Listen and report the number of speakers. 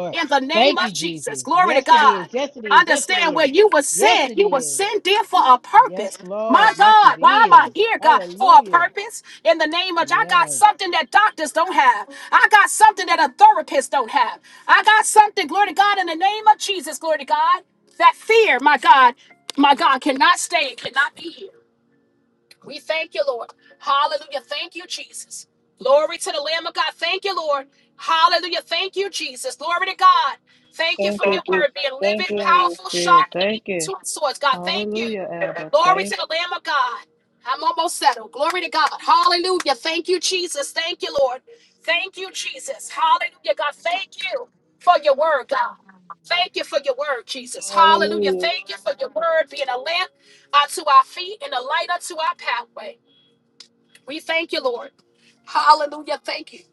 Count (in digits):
3